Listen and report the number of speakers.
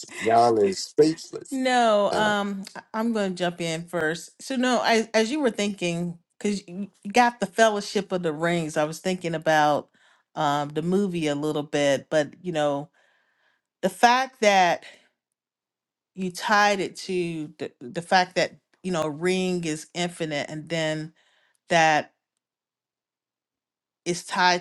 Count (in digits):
2